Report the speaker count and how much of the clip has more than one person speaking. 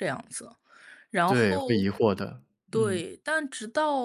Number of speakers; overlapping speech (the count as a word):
two, about 21%